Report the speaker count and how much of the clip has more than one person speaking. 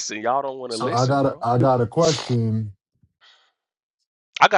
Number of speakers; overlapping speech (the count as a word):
two, about 15%